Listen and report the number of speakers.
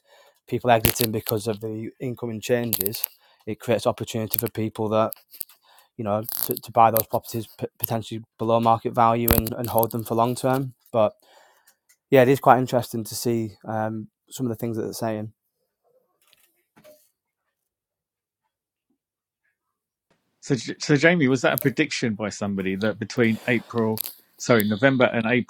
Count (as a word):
two